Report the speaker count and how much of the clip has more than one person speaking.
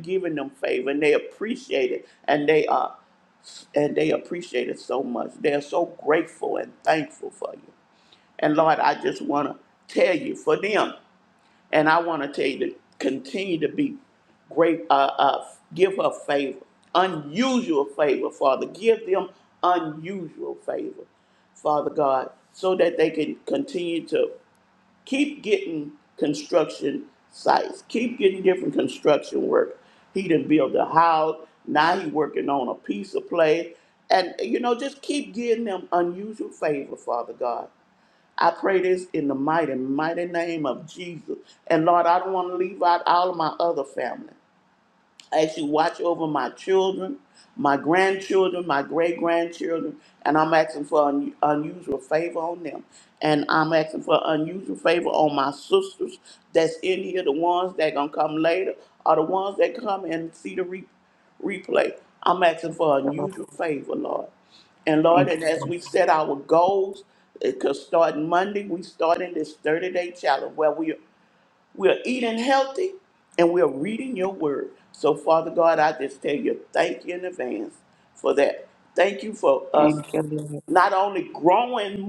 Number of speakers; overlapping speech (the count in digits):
2, about 1%